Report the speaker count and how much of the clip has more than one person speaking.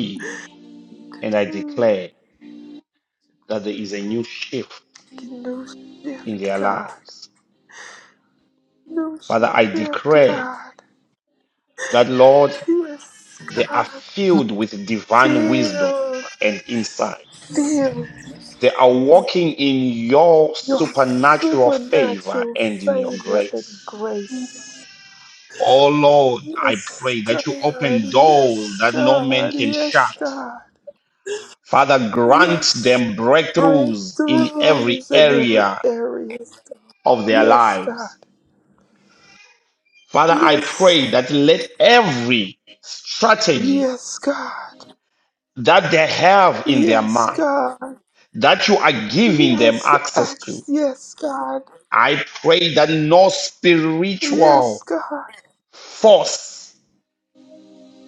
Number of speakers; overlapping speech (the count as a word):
two, about 24%